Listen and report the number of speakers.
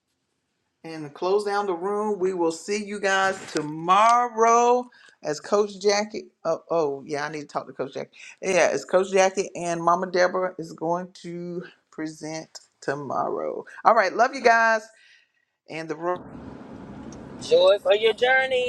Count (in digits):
2